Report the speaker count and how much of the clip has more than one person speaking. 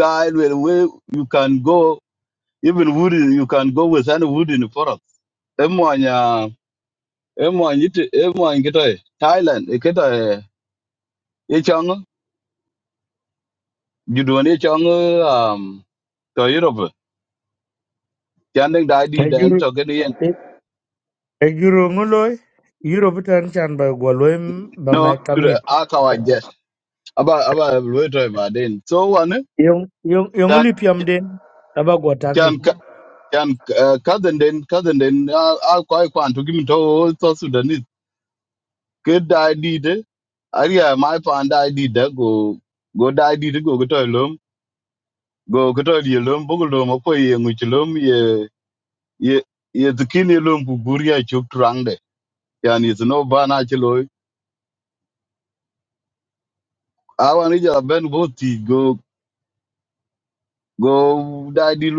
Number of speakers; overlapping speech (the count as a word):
two, about 2%